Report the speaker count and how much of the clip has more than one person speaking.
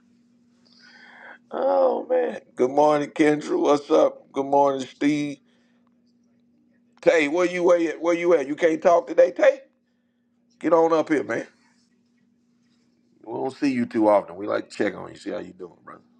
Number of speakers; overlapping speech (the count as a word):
one, no overlap